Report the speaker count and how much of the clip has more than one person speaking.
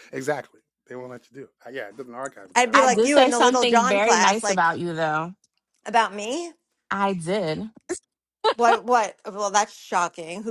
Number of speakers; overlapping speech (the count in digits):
3, about 19%